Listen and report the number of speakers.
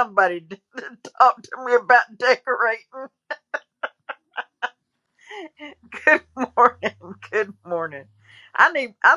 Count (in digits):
1